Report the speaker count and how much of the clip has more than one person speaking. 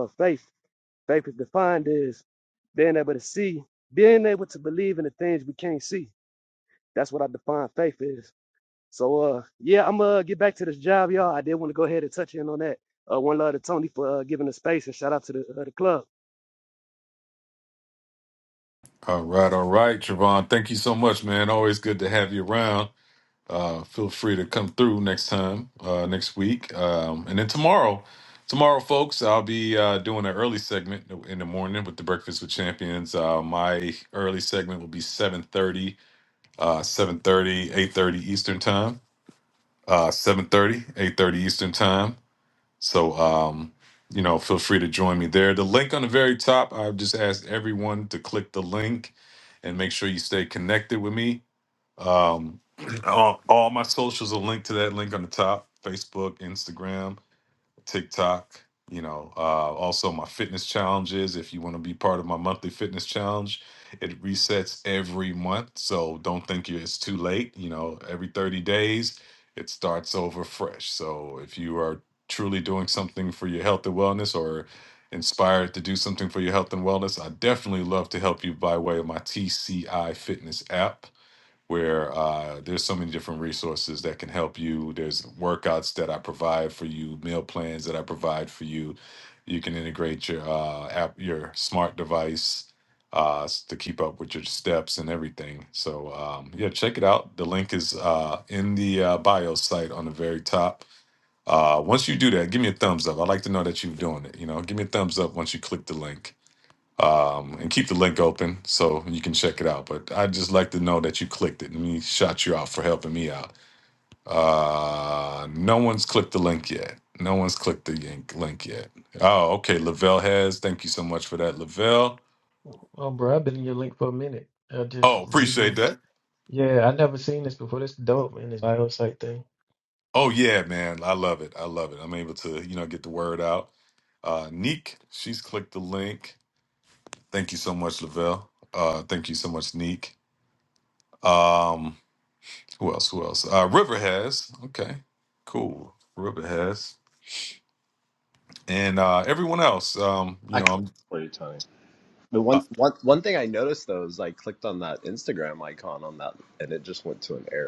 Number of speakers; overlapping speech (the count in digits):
4, about 1%